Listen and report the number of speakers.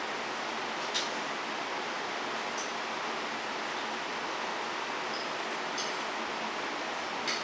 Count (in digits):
0